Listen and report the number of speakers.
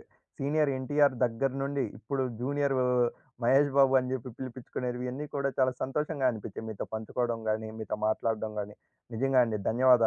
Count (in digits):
1